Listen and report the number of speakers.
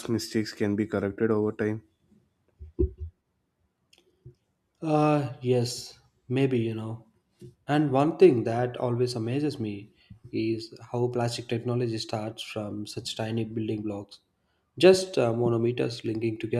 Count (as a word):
two